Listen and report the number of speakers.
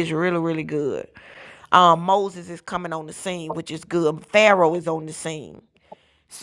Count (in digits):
1